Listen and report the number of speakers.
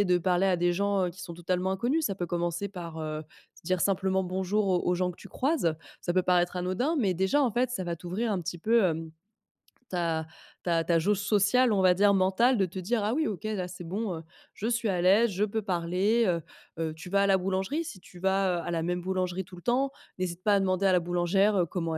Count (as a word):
one